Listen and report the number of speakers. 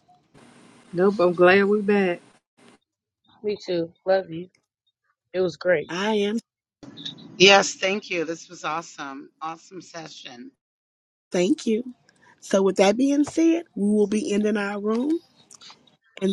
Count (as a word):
four